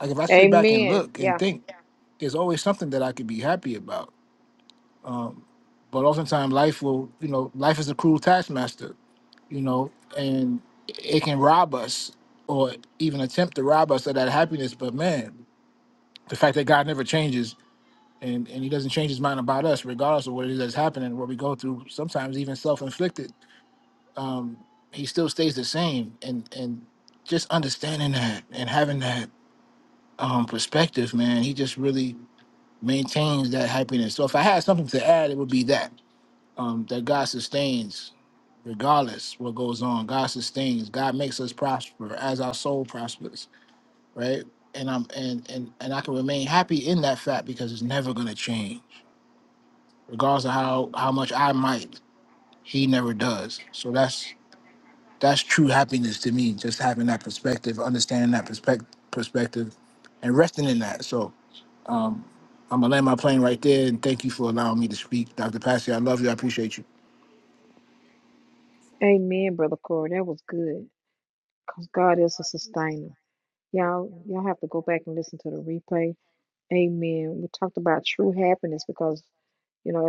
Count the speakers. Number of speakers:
two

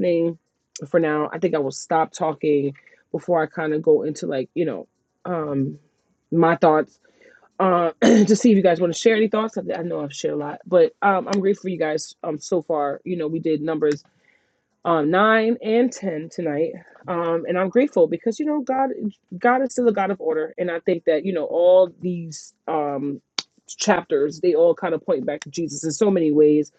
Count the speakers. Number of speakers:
one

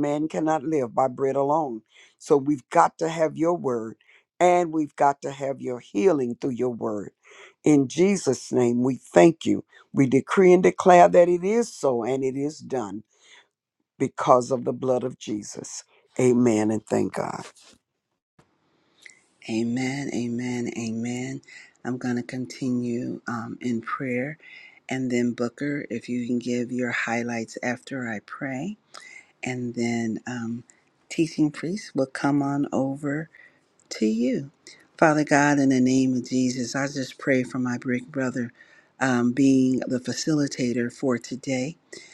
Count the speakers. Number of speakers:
two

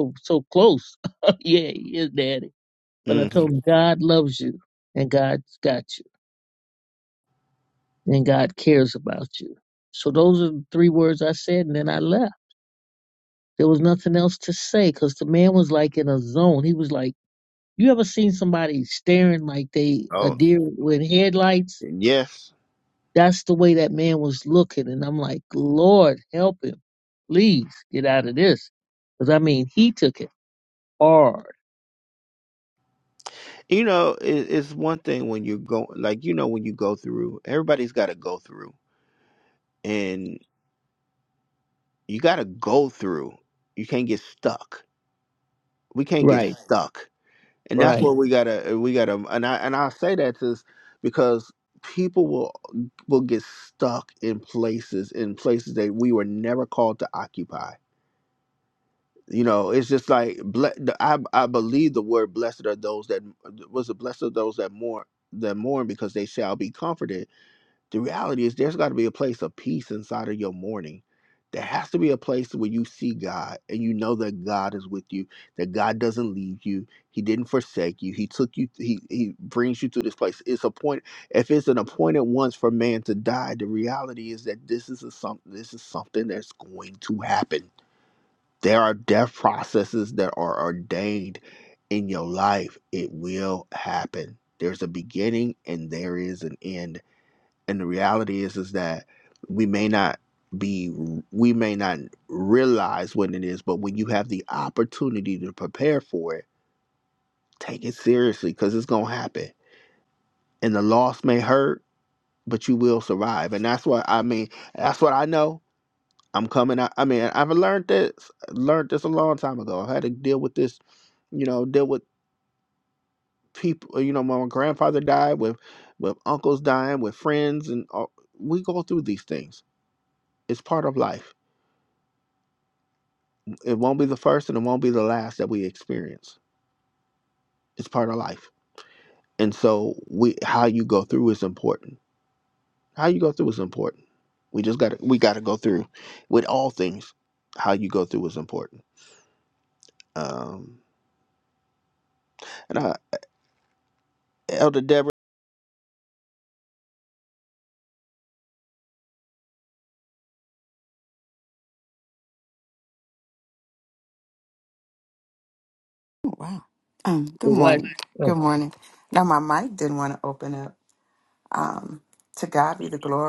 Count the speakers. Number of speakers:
three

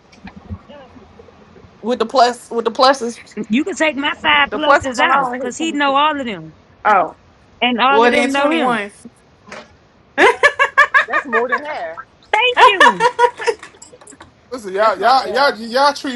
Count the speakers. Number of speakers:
four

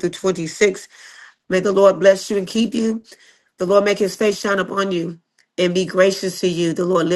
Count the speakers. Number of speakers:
one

